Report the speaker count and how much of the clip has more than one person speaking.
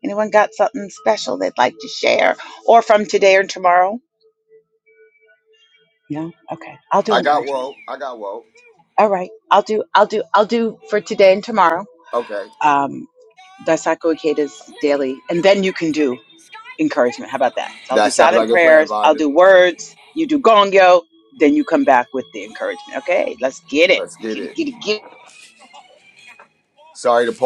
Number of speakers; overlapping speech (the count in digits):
2, about 8%